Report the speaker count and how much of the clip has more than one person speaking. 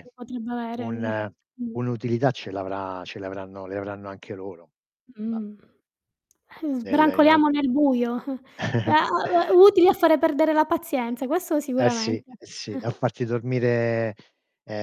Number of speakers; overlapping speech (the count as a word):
two, about 10%